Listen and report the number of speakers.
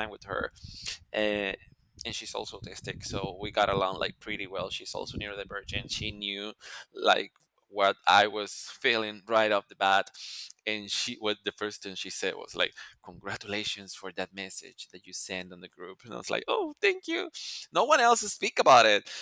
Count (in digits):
1